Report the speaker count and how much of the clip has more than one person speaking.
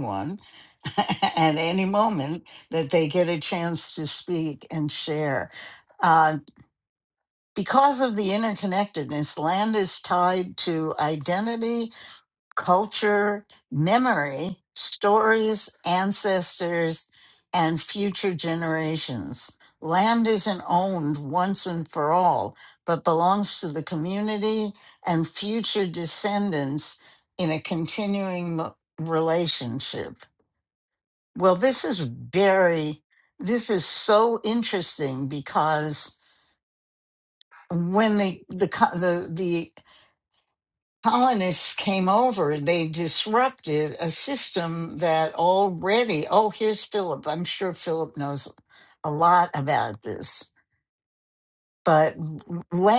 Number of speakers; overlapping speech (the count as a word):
one, no overlap